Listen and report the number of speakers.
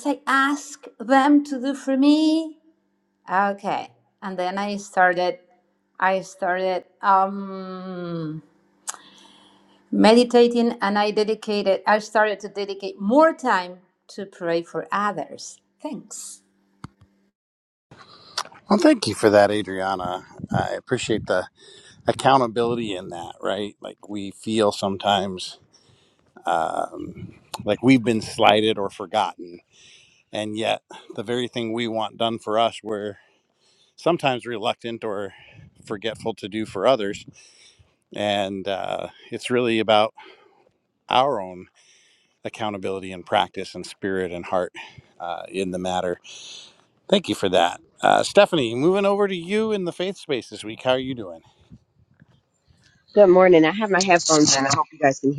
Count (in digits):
3